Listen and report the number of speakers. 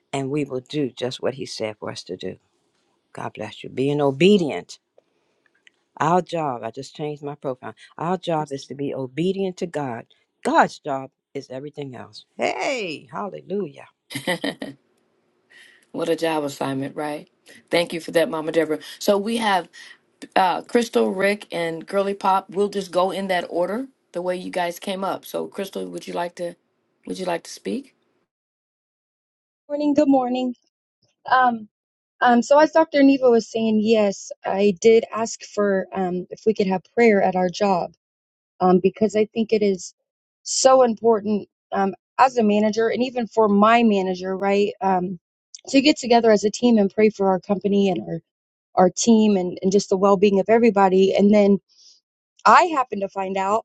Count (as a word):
three